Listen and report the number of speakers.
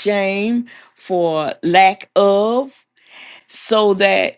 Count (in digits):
1